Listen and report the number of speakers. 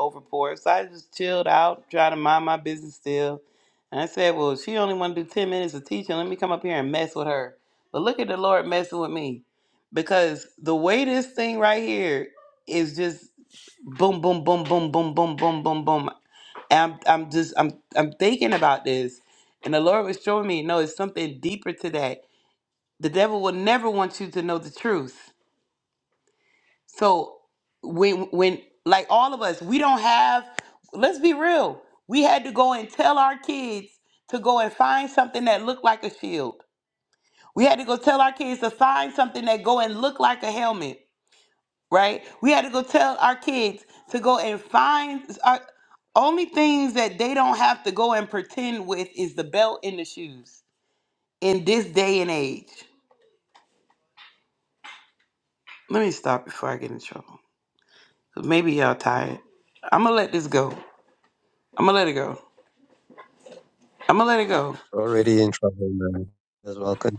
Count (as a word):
two